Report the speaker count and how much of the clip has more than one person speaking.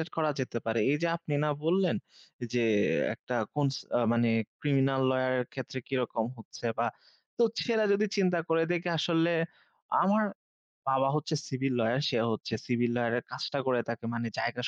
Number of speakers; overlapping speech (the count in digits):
1, no overlap